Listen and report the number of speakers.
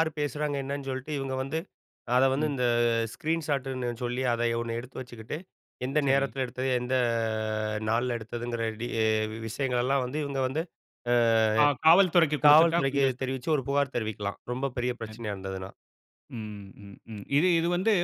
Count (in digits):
2